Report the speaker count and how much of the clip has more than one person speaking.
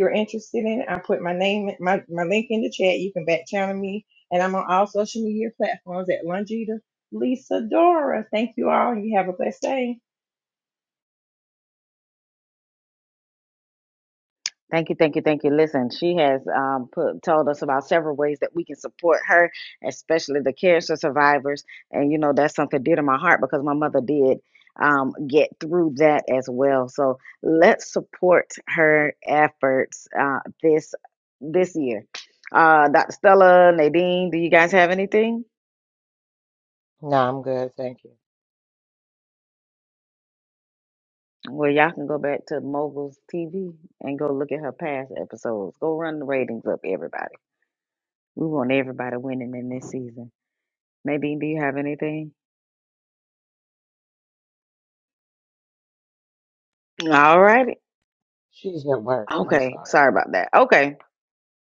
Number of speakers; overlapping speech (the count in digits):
3, about 1%